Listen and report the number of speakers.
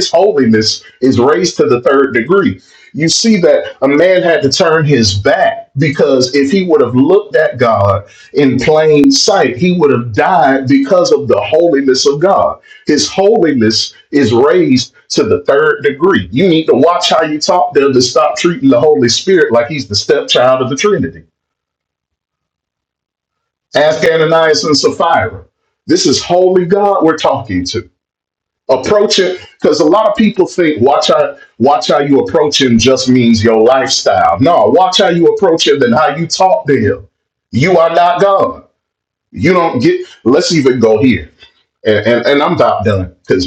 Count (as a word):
one